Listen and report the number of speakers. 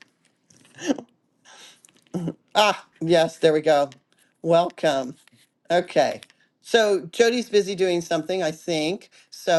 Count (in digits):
1